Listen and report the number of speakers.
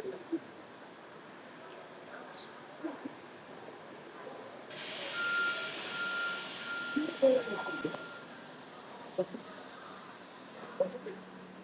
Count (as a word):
zero